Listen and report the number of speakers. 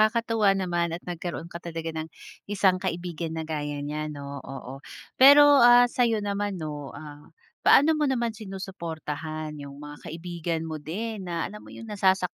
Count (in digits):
1